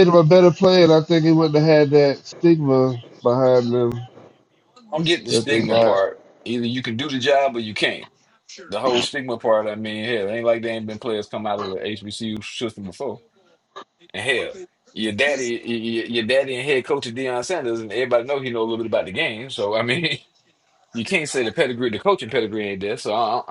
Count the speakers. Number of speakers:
two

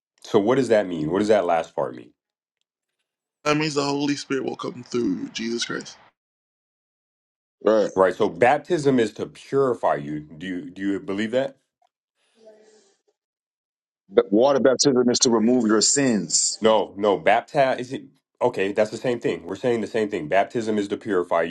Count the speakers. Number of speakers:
three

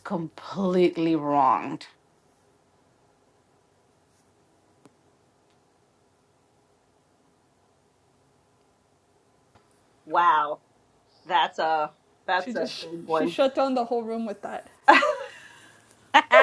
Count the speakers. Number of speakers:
three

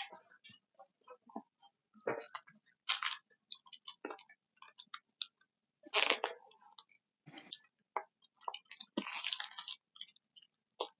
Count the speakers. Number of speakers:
zero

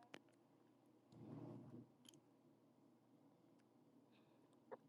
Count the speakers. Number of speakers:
zero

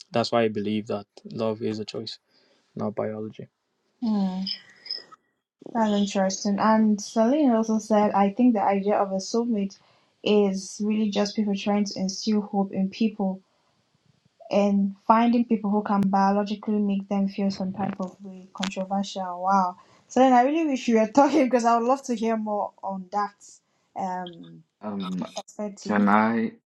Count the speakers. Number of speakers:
three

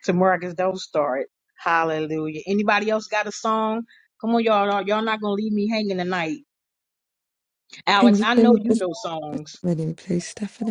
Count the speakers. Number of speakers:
two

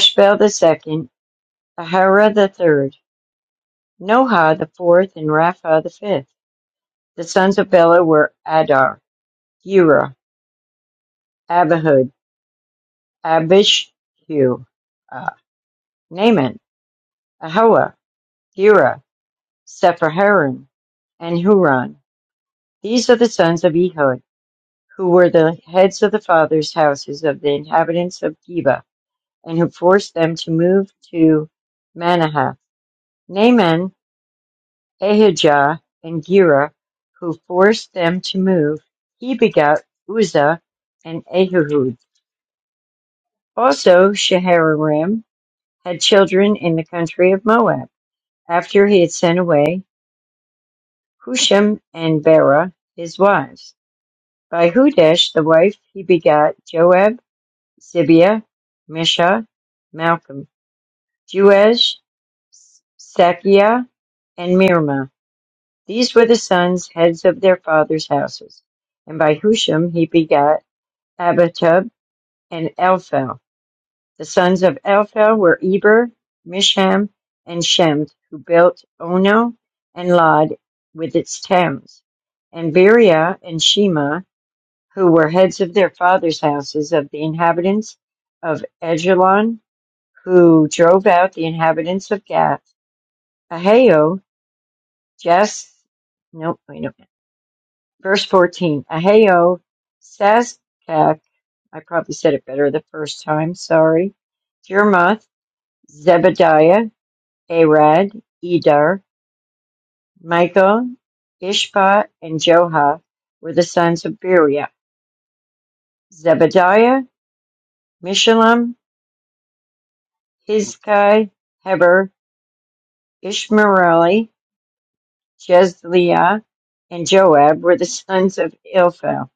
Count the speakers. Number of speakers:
one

